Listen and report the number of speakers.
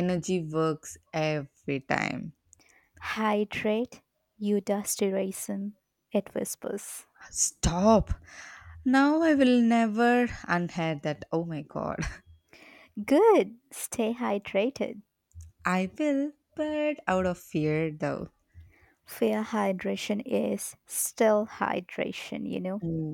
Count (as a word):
two